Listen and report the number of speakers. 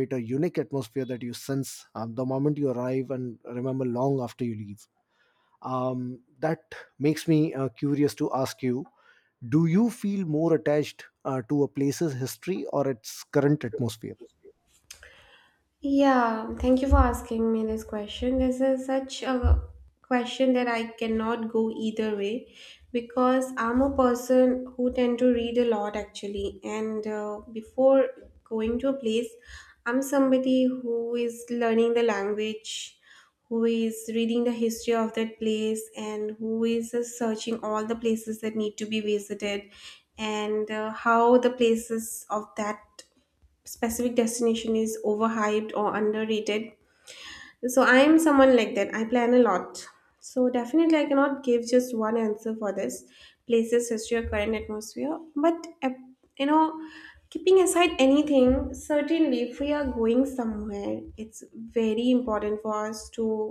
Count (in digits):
2